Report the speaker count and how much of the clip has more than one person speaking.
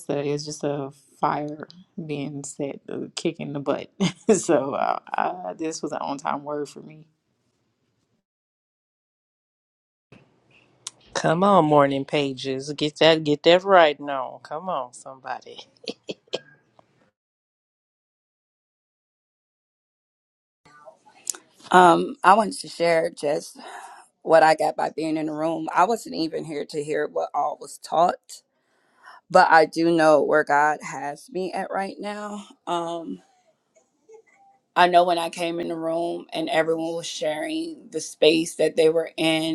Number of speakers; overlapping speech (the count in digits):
3, no overlap